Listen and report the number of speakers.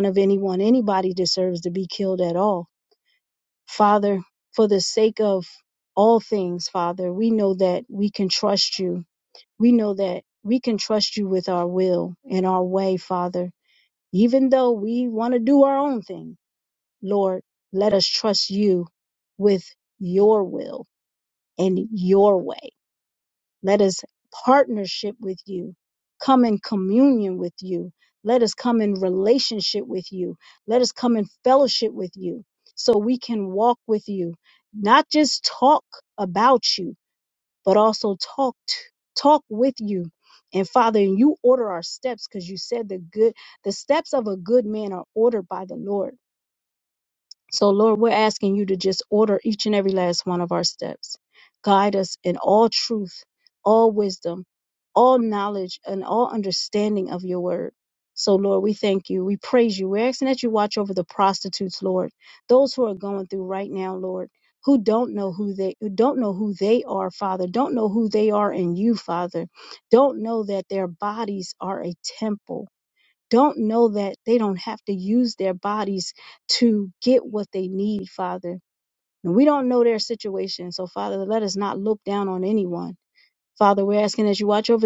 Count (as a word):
one